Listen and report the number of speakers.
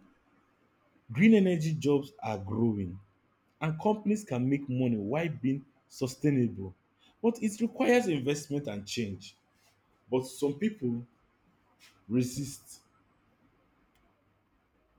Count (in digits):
1